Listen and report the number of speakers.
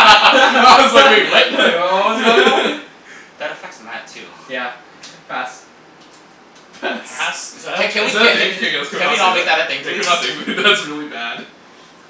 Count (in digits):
4